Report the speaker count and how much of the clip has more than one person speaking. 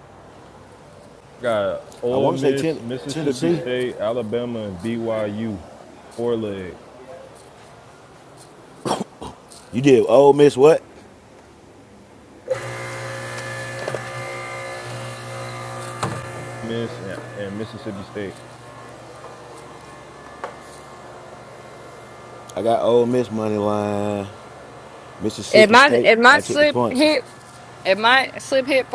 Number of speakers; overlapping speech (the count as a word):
three, about 11%